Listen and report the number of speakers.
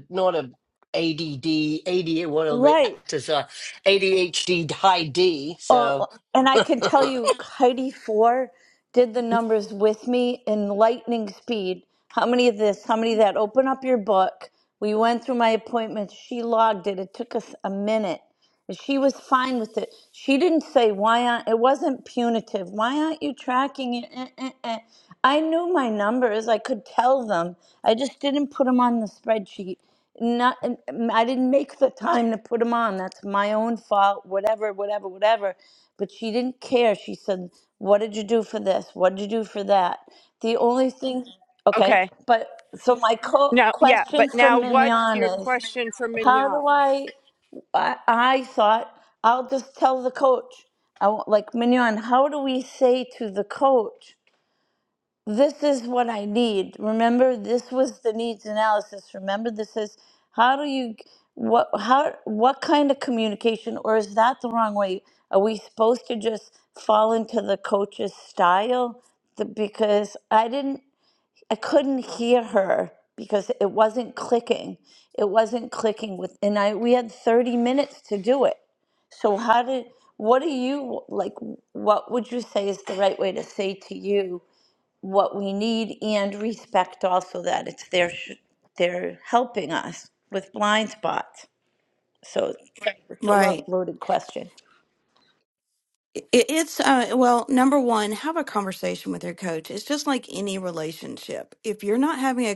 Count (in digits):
4